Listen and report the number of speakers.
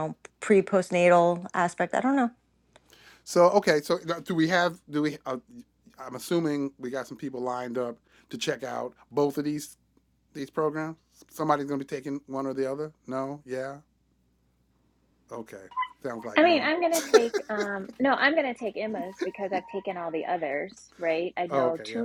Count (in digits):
3